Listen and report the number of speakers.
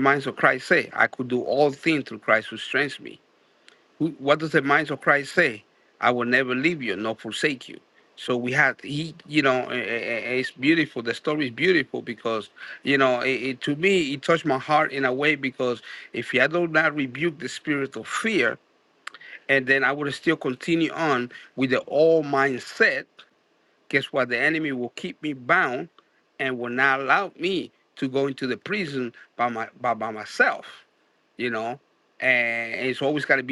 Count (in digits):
1